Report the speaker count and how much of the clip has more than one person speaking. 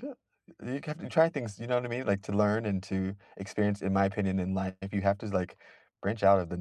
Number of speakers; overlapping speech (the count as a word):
one, no overlap